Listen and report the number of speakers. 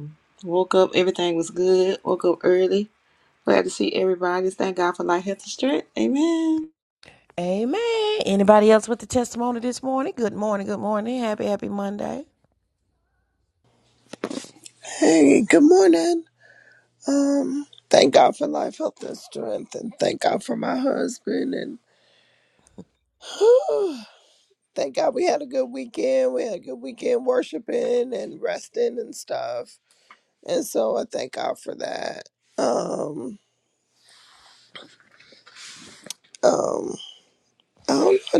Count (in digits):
3